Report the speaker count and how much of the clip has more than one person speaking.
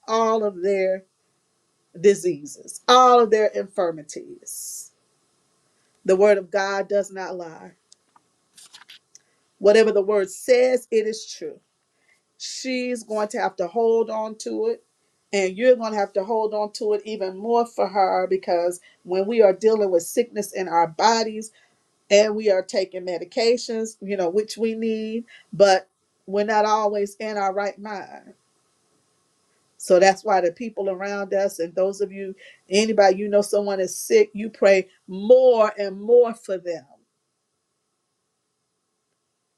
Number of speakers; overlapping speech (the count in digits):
1, no overlap